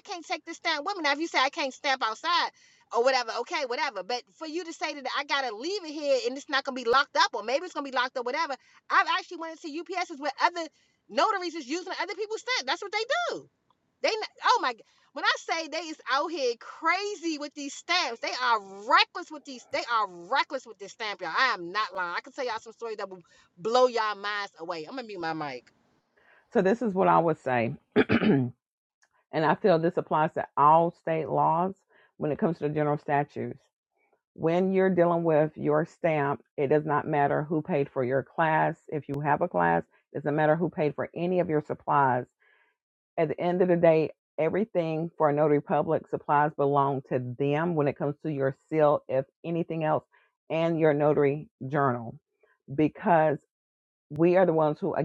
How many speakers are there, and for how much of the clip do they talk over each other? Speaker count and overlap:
two, no overlap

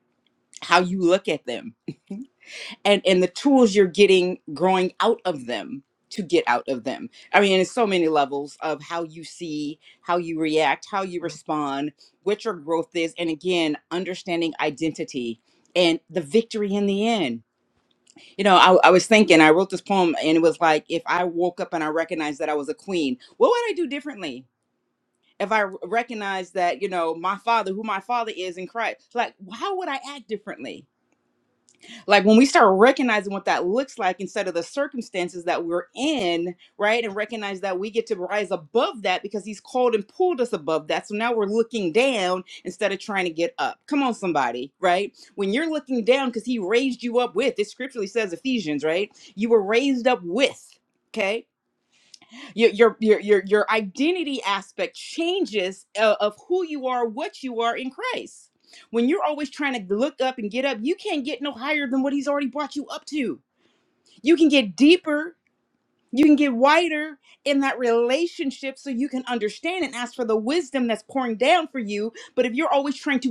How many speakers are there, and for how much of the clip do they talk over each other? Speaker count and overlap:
one, no overlap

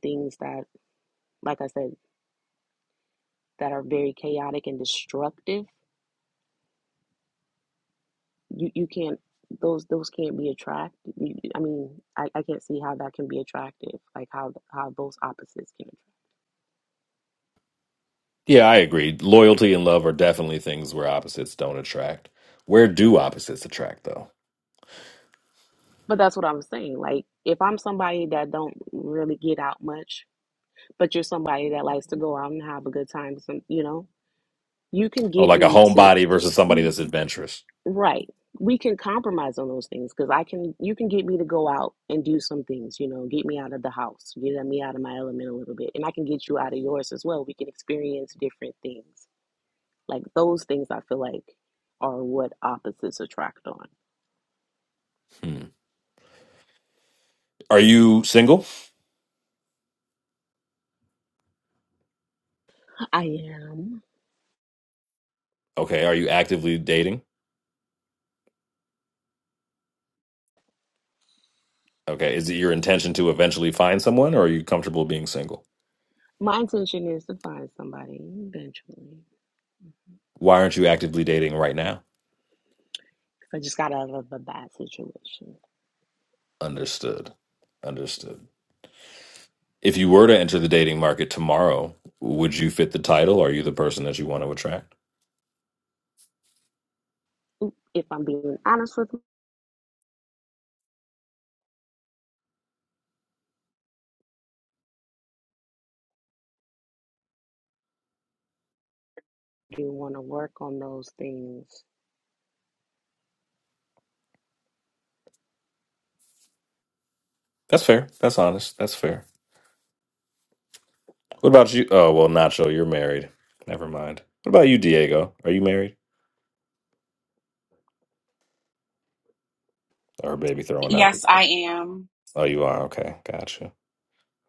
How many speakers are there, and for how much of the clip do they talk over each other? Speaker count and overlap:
three, about 1%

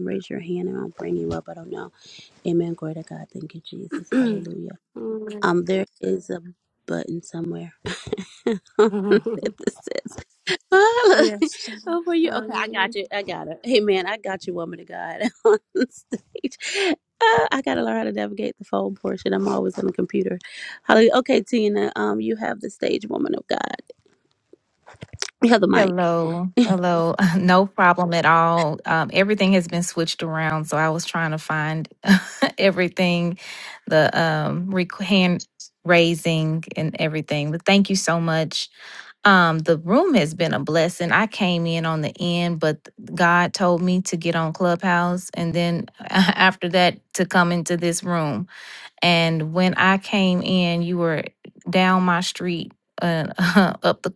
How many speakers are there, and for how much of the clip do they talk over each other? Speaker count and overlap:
three, about 2%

